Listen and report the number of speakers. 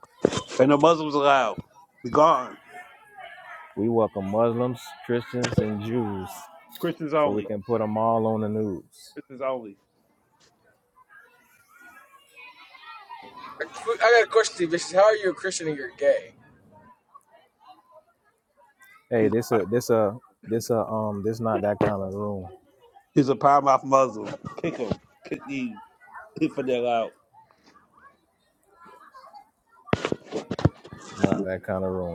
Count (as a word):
three